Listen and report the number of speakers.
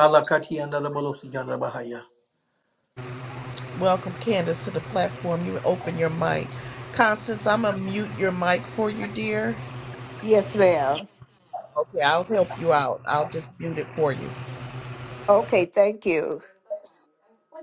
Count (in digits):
3